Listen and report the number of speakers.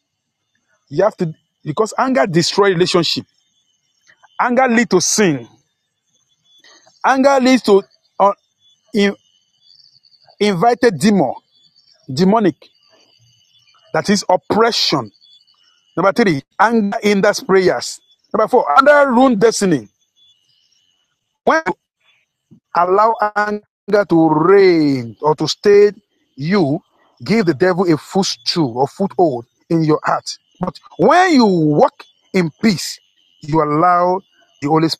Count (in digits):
1